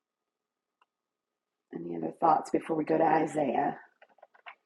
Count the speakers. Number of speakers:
1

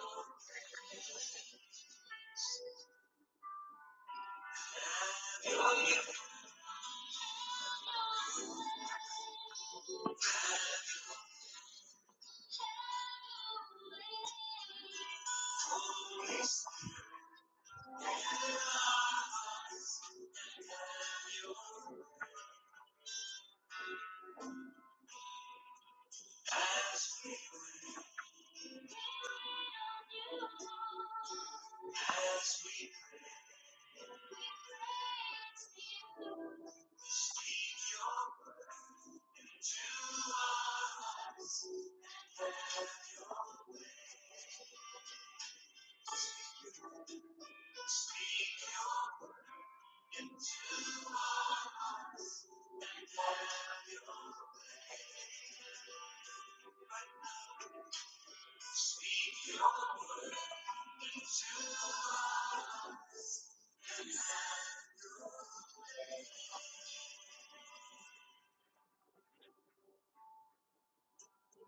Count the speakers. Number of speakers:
0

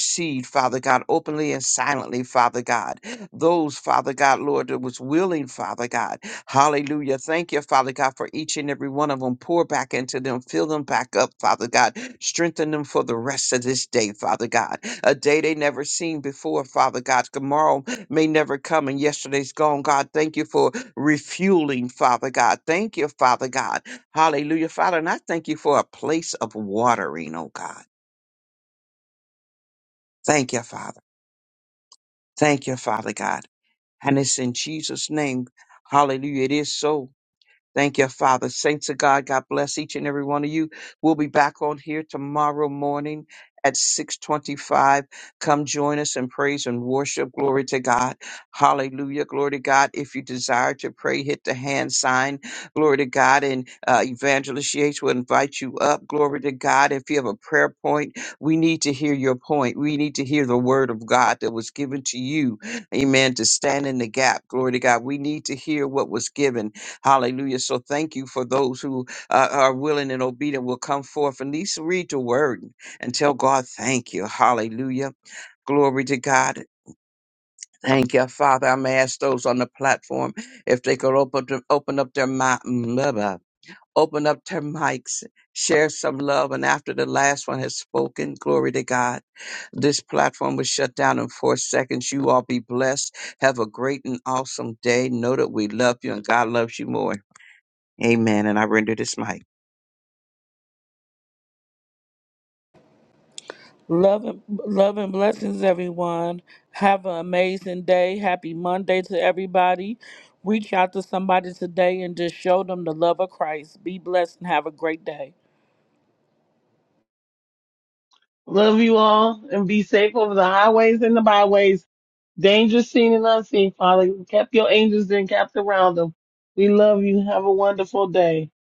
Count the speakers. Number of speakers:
3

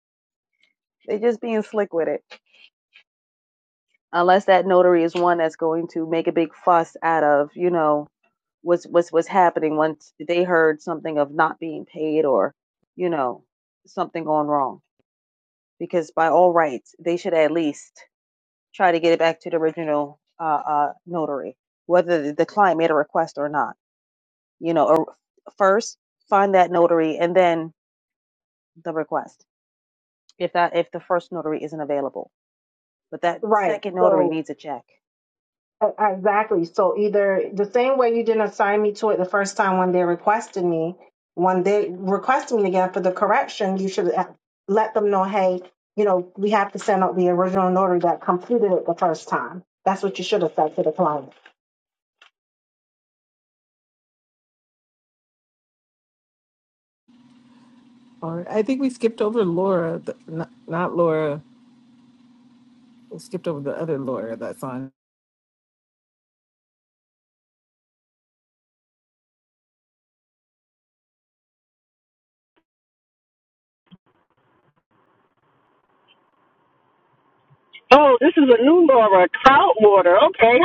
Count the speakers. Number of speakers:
4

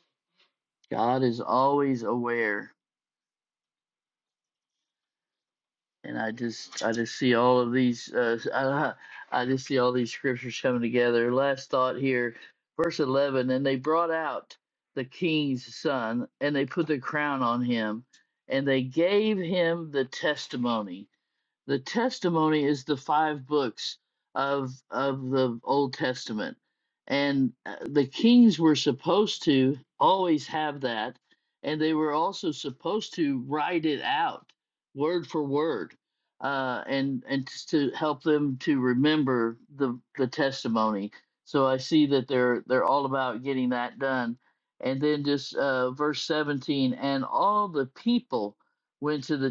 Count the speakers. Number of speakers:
1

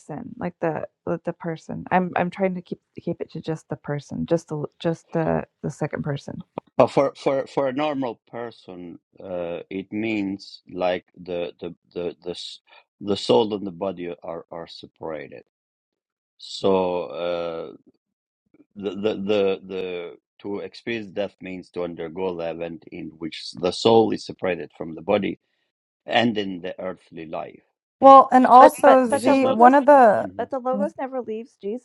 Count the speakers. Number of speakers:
3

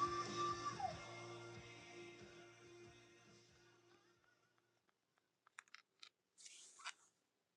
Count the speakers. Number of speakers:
0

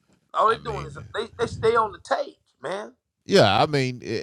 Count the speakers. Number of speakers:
2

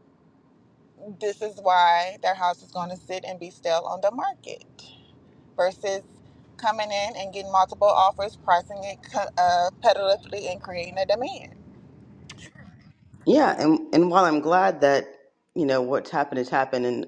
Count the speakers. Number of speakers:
2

